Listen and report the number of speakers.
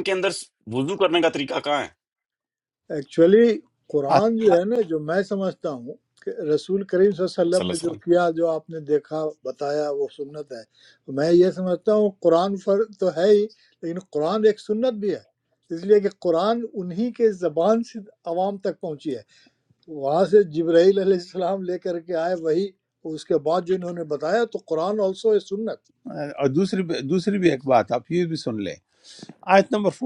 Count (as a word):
three